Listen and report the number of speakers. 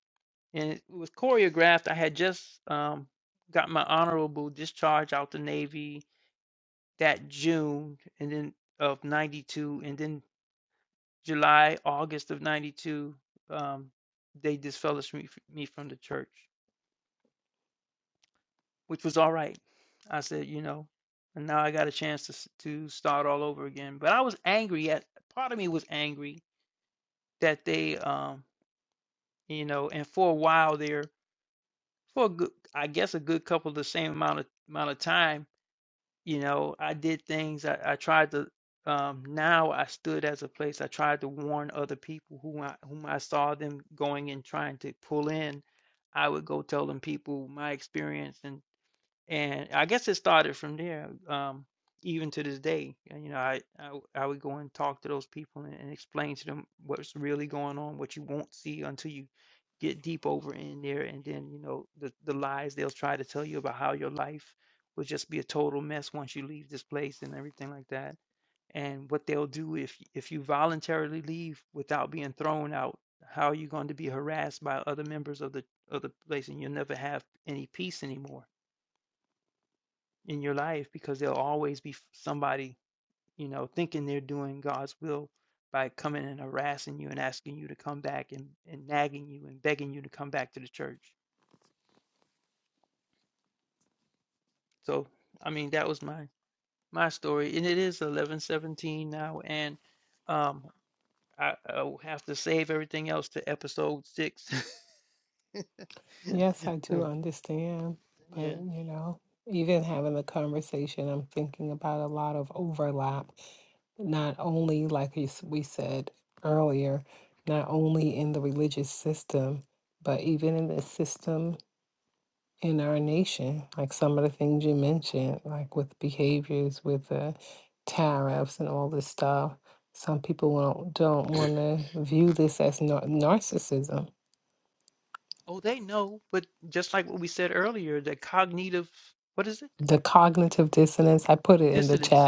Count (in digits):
2